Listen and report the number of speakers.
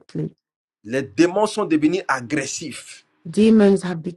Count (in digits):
2